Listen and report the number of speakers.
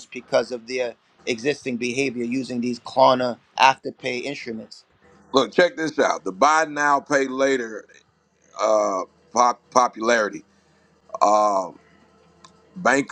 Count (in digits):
2